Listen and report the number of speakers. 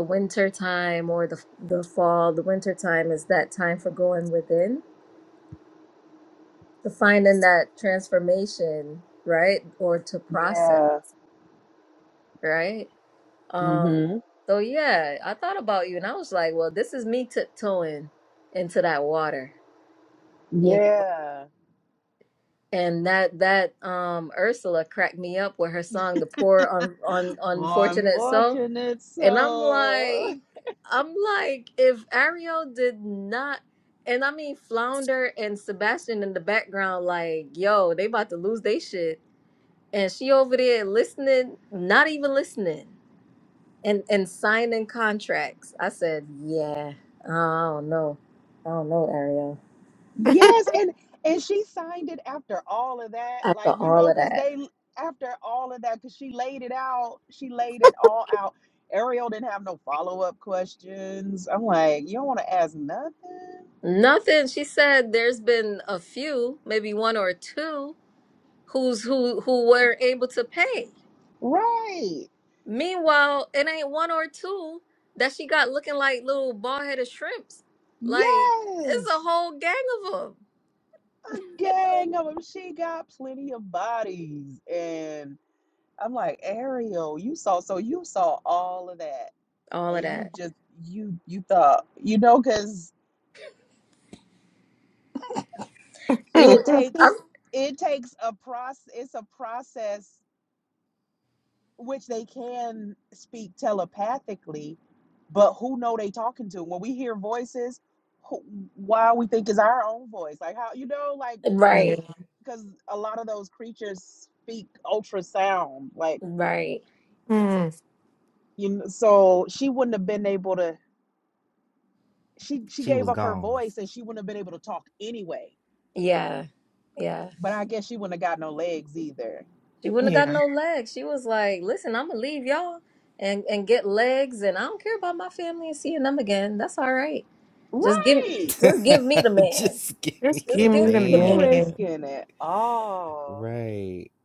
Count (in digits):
4